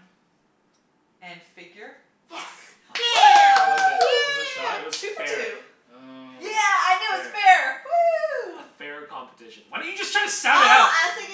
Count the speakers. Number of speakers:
4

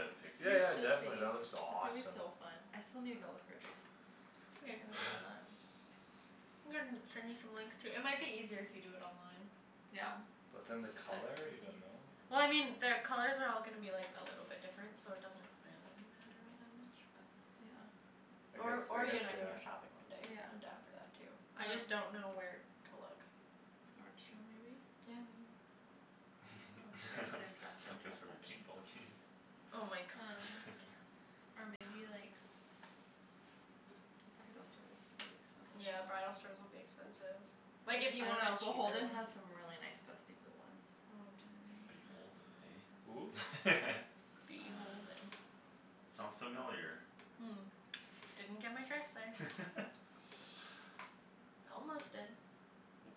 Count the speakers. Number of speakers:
4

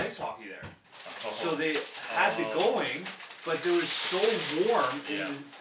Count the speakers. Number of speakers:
2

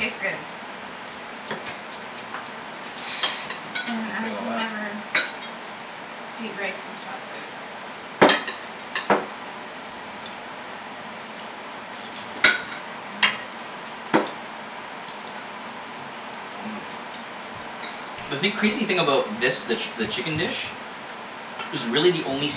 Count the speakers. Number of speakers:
2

